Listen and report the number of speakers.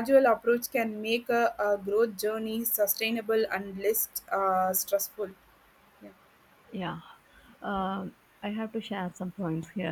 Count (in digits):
2